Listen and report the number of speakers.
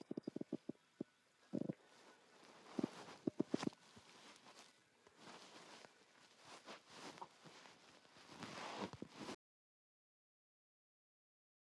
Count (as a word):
zero